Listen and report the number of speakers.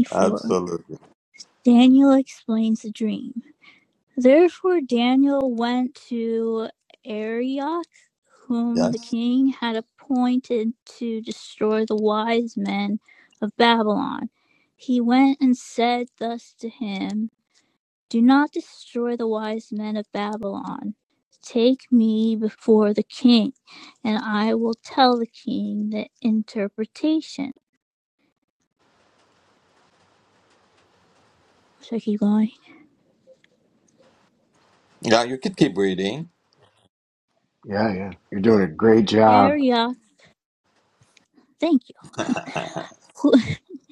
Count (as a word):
three